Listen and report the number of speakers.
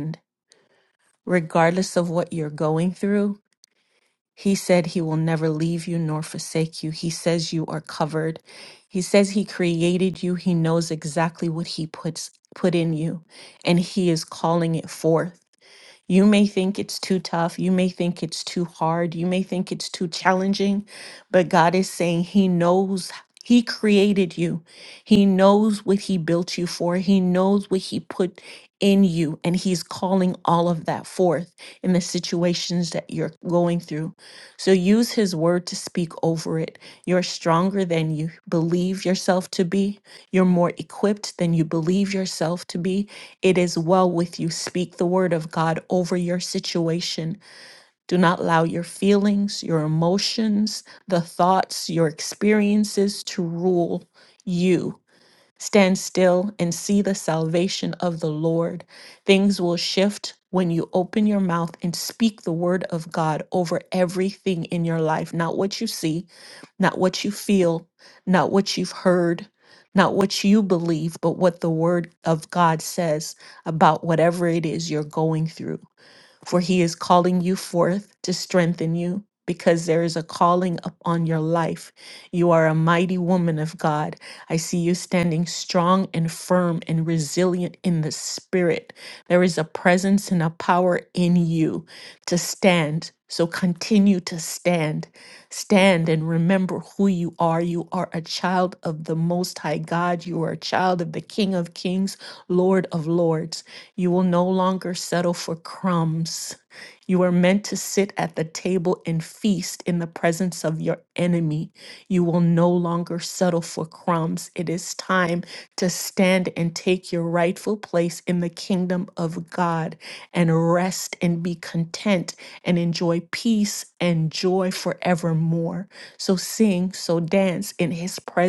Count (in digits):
1